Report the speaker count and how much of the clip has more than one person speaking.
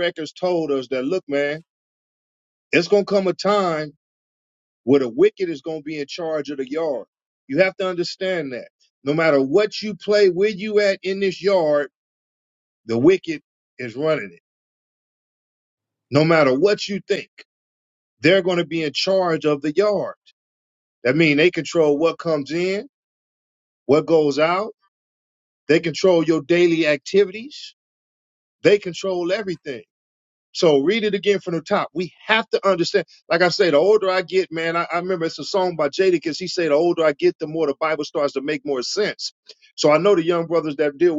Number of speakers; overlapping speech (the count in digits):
1, no overlap